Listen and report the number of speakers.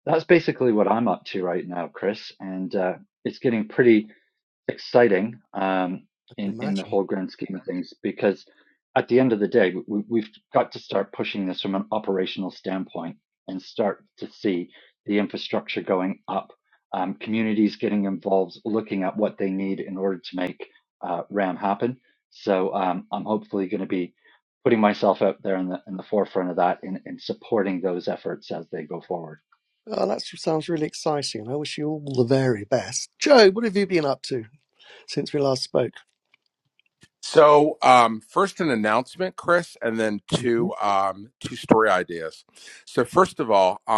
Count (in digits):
3